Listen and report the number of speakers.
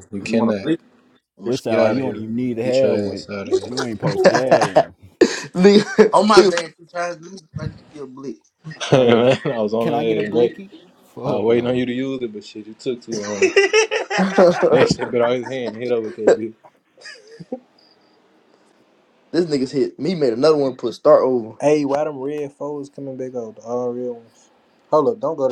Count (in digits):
4